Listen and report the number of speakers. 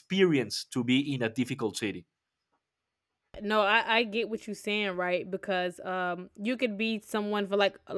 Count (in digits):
2